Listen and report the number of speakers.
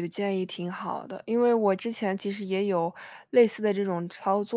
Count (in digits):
1